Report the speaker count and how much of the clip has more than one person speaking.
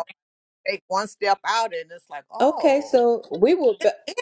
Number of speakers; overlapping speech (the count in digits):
2, about 13%